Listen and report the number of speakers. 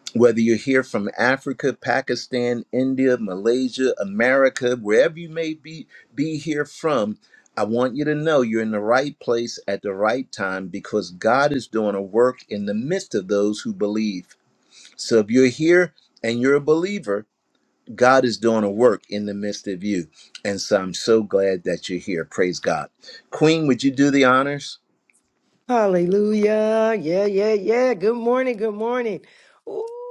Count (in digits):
2